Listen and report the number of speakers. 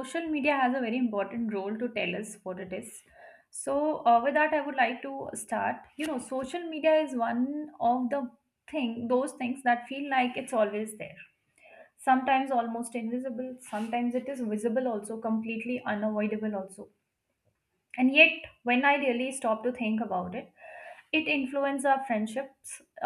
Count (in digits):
1